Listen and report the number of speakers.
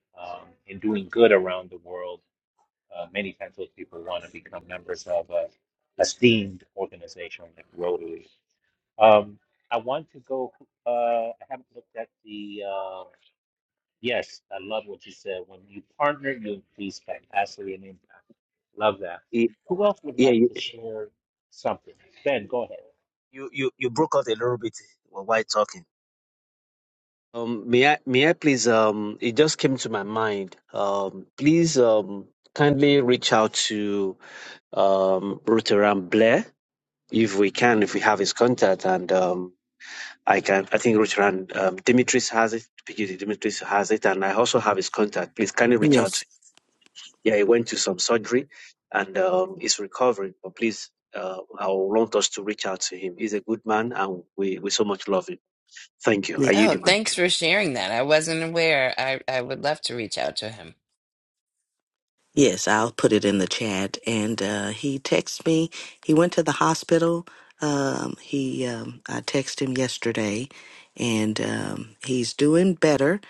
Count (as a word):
four